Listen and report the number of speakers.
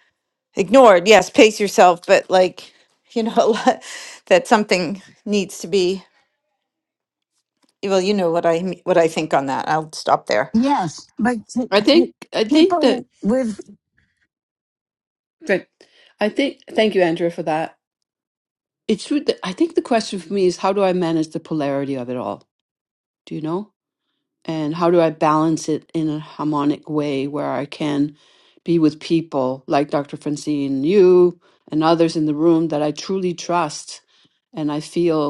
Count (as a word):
three